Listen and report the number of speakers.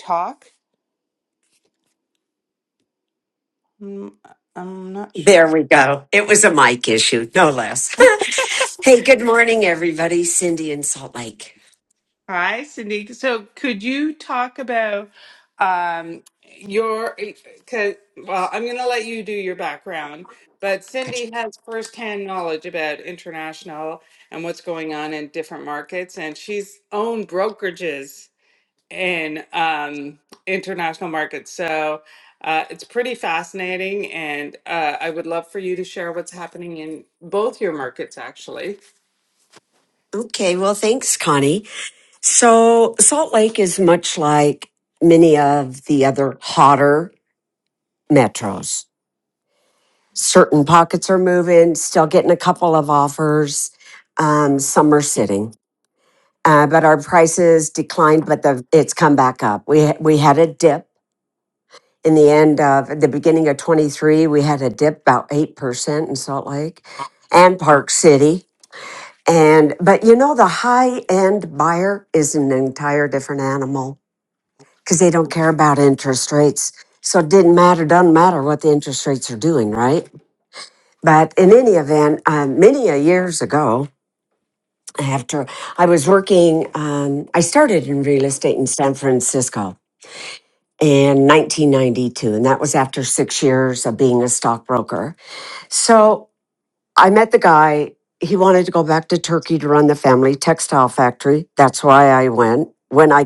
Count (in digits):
2